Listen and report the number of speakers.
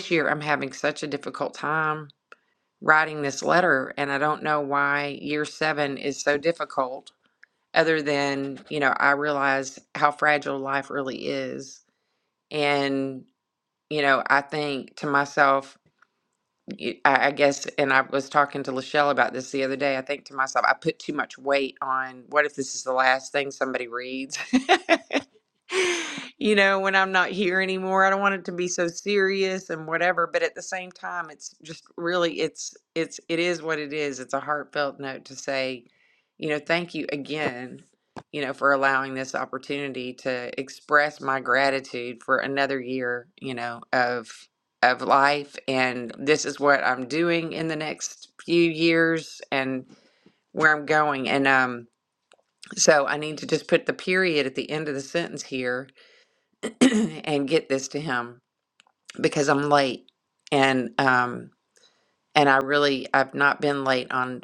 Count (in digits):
1